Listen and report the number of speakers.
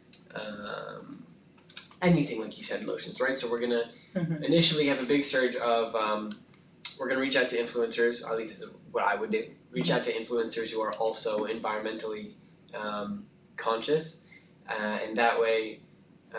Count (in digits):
1